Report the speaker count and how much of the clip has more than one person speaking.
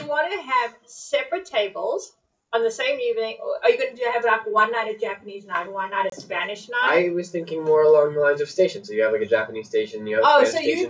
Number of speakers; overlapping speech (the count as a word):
two, about 9%